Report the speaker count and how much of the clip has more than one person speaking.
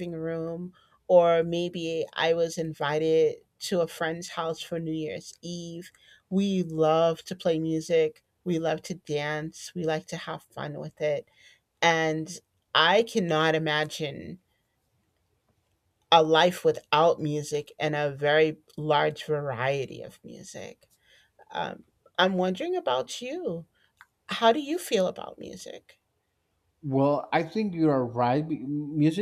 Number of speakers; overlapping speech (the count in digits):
2, no overlap